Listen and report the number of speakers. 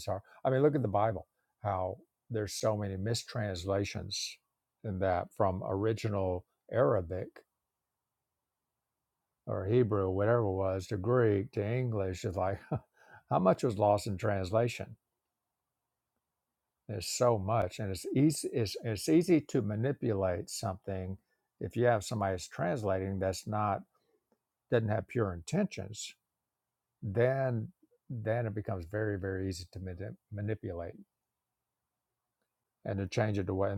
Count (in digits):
1